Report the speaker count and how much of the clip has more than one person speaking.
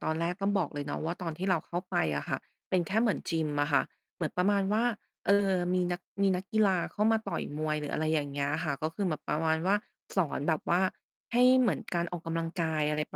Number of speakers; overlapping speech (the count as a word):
one, no overlap